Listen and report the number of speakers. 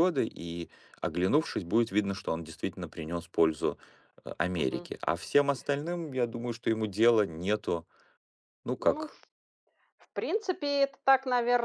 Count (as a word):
two